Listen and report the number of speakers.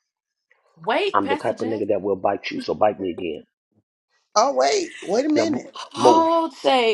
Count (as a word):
three